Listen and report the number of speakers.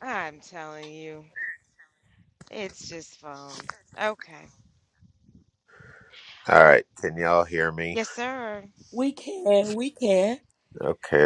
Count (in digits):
3